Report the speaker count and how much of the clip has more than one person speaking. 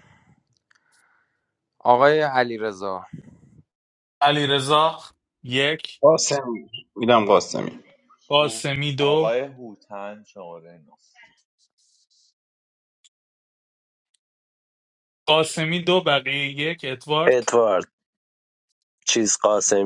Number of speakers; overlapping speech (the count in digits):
5, about 4%